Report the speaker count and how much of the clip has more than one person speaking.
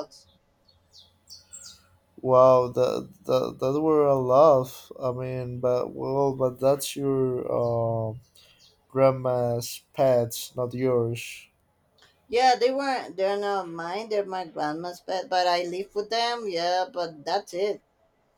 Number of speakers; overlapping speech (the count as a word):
two, no overlap